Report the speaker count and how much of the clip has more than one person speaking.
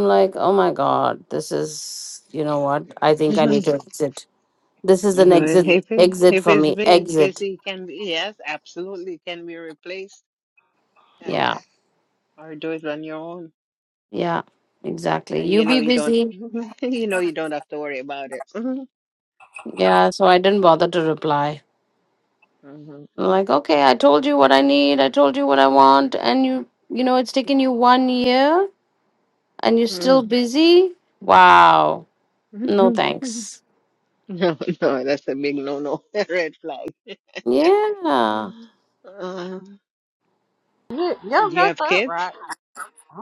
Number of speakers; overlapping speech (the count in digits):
3, about 11%